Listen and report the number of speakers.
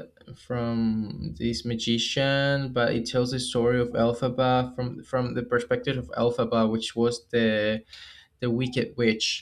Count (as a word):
one